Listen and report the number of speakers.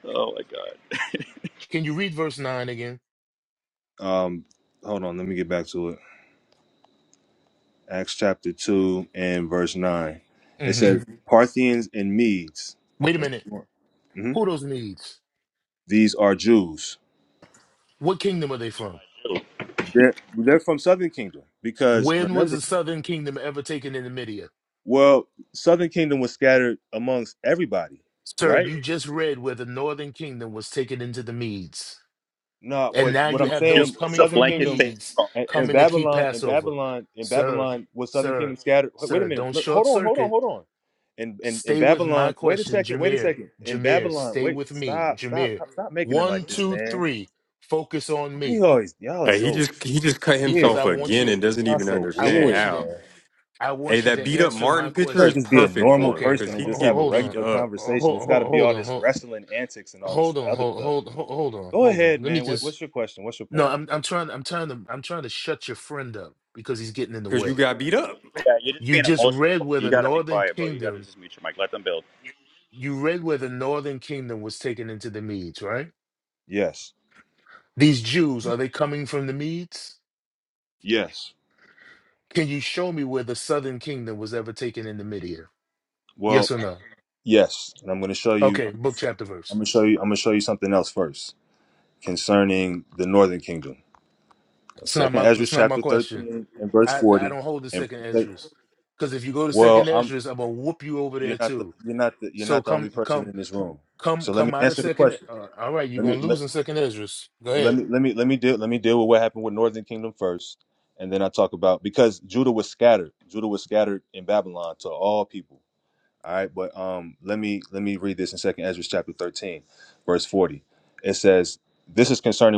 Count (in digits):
4